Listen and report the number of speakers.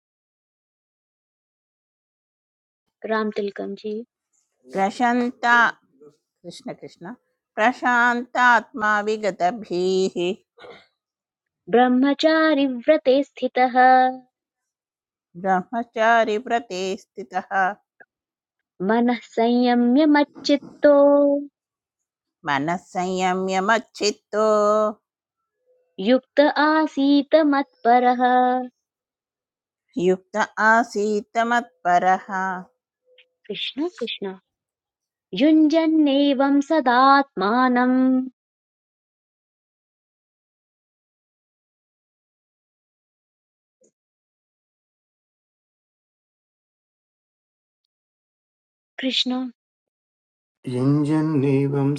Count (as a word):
three